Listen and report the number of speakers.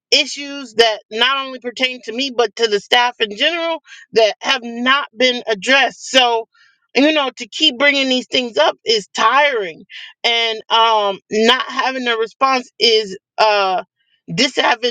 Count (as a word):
one